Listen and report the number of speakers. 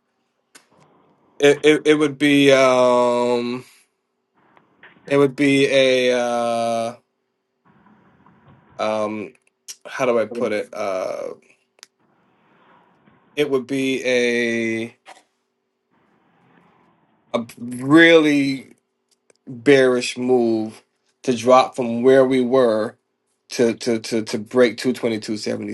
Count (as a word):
one